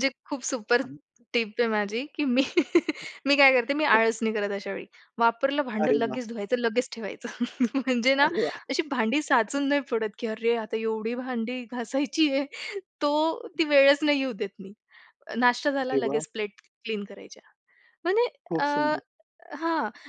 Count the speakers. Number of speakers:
2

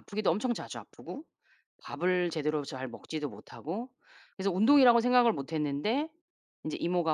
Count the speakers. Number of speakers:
1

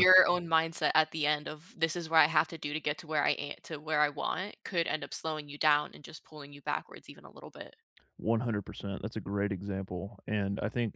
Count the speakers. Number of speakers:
2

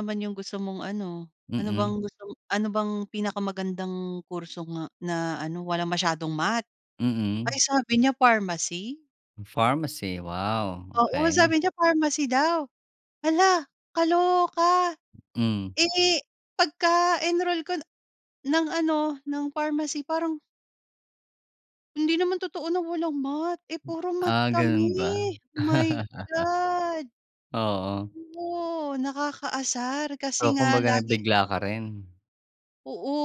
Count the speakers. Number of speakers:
2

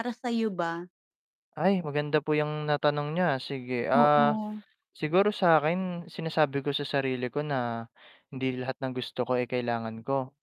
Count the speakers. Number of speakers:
2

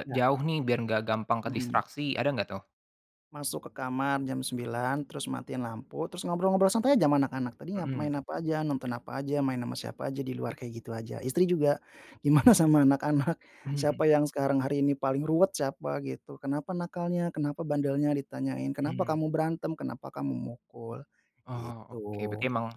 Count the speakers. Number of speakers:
2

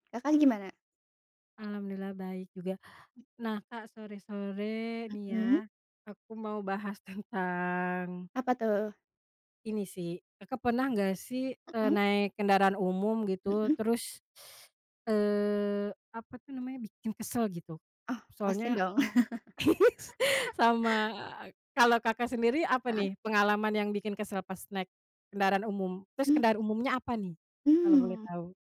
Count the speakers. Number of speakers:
2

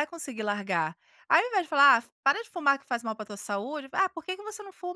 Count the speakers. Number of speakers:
1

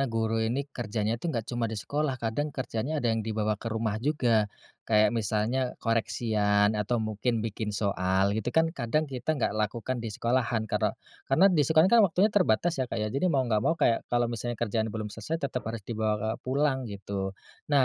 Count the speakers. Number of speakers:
1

